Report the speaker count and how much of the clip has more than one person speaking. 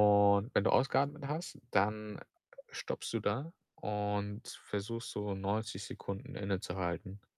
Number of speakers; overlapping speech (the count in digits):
1, no overlap